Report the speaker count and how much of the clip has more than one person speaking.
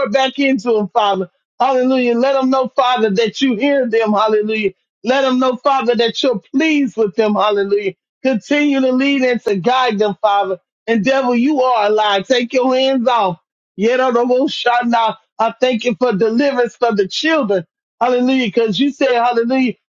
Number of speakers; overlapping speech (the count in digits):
1, no overlap